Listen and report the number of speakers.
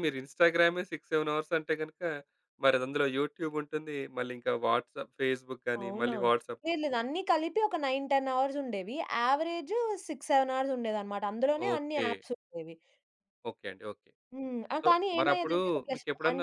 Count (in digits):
2